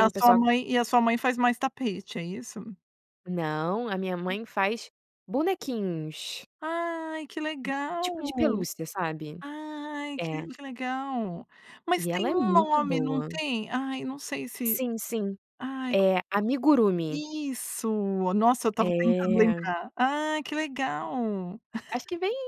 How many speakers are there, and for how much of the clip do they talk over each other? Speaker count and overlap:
2, about 16%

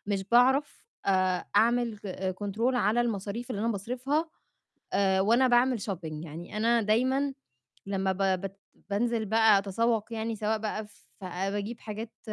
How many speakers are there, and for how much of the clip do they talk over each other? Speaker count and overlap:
1, no overlap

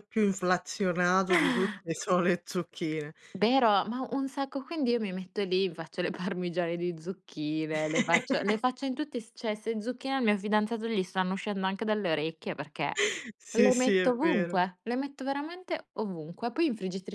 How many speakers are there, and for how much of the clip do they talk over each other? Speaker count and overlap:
2, about 6%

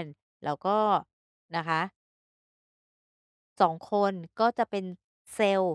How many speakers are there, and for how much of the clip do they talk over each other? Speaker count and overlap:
1, no overlap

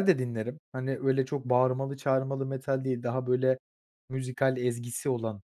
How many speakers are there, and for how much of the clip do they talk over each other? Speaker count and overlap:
1, no overlap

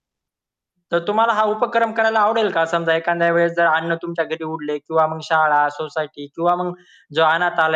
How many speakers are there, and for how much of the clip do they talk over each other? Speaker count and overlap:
1, no overlap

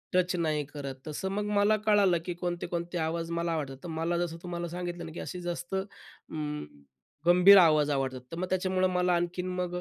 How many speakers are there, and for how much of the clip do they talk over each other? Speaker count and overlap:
1, no overlap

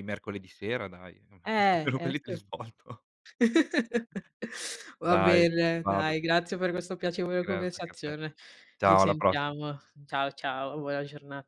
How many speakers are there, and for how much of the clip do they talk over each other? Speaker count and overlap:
2, about 24%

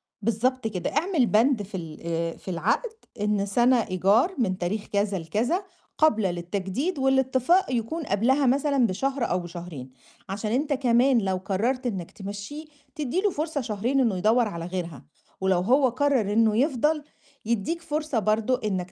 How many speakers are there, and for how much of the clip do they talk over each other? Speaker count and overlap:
1, no overlap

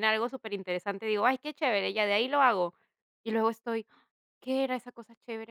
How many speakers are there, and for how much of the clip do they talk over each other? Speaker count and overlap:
1, no overlap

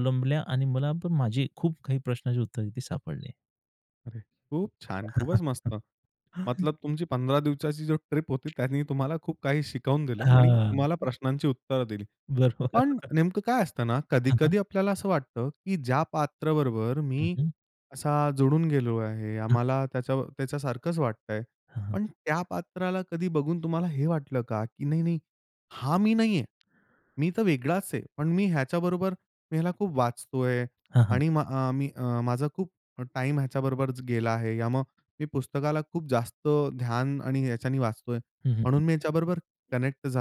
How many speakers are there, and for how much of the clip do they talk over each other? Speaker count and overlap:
2, about 5%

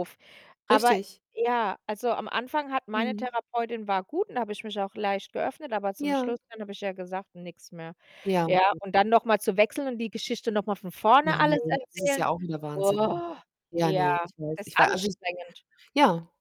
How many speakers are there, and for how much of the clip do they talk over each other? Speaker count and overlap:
2, about 20%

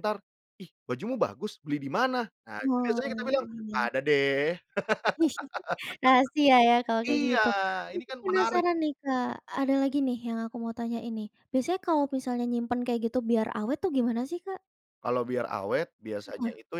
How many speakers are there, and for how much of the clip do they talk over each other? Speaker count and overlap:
2, about 11%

